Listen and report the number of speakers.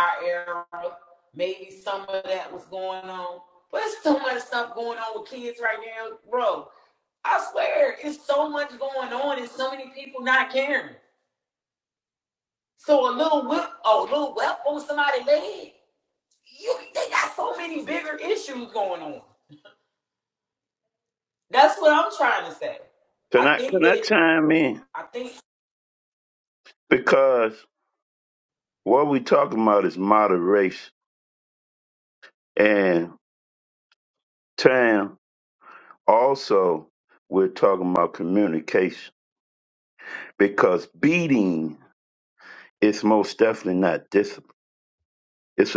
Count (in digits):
2